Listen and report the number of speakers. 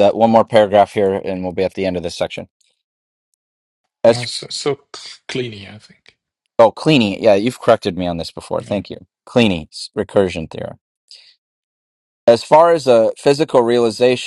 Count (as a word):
two